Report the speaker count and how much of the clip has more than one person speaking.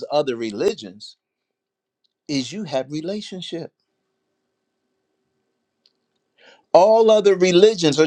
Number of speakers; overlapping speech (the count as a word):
one, no overlap